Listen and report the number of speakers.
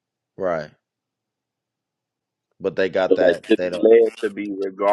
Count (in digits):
2